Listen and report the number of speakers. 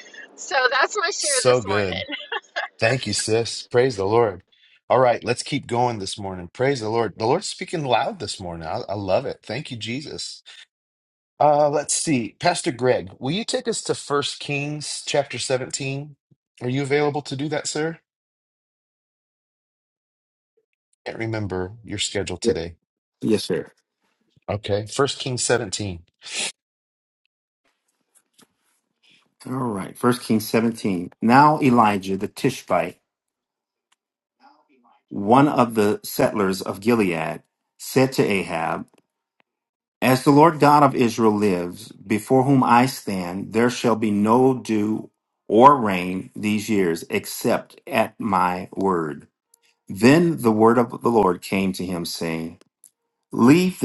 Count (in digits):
3